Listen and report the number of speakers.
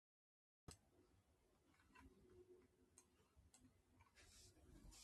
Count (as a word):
zero